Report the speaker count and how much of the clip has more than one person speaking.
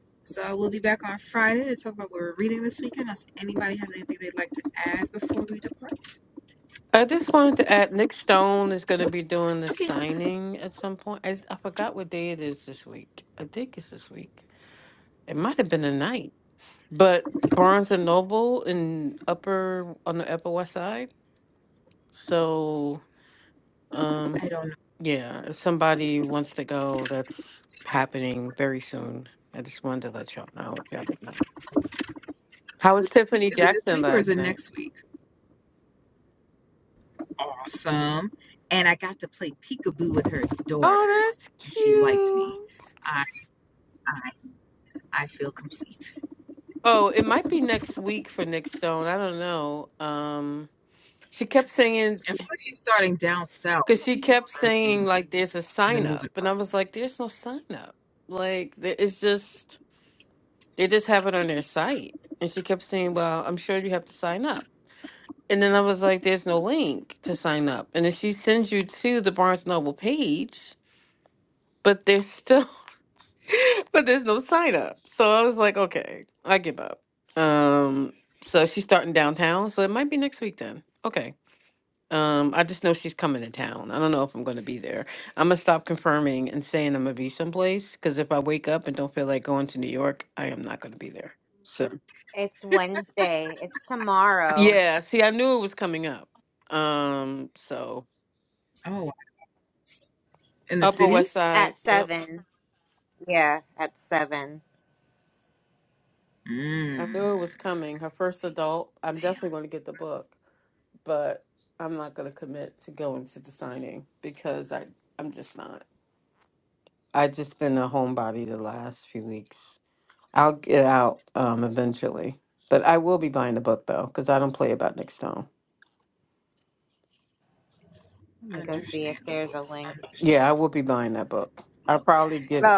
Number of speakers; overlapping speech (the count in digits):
3, about 6%